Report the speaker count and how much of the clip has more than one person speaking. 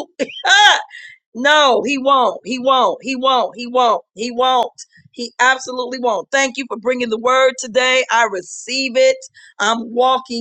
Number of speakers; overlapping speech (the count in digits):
1, no overlap